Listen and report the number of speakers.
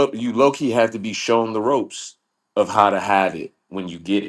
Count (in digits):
1